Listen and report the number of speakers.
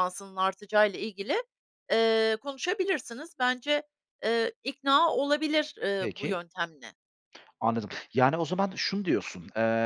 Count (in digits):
2